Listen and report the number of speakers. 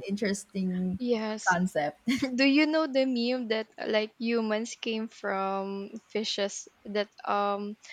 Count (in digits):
2